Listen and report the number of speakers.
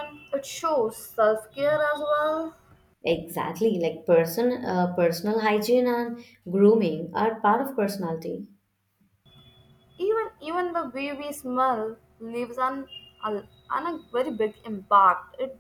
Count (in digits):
2